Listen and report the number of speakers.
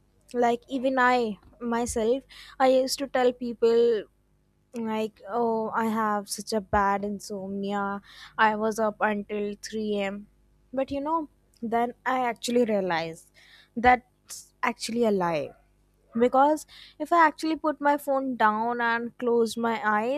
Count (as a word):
one